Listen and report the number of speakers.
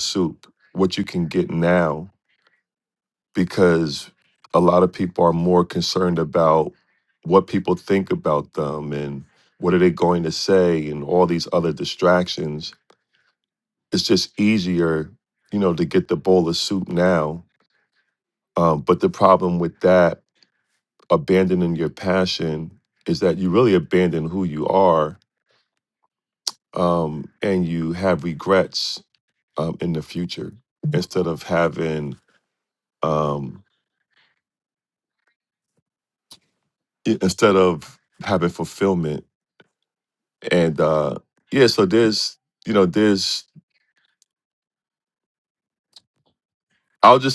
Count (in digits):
1